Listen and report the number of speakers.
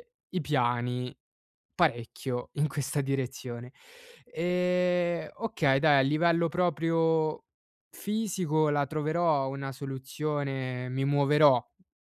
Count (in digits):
1